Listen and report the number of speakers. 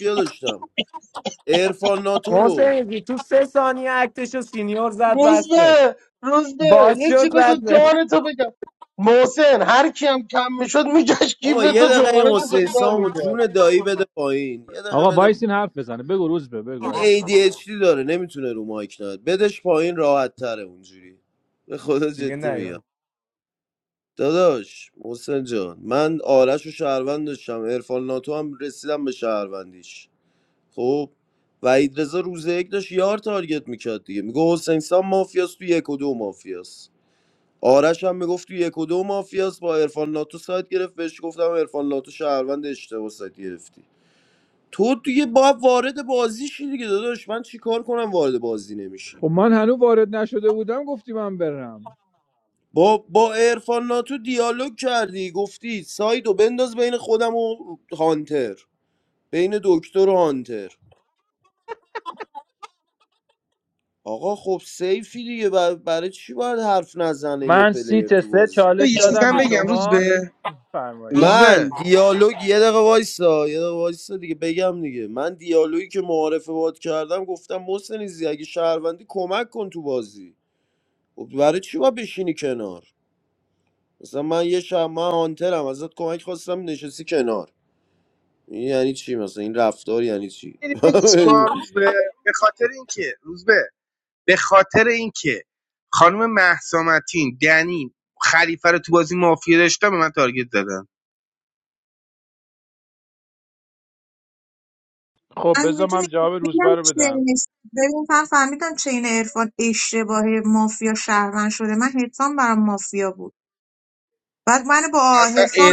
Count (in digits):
6